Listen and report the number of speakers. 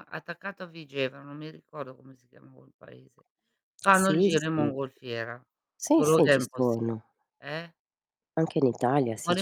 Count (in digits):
2